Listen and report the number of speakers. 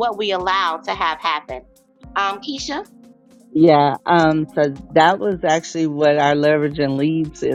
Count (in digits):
2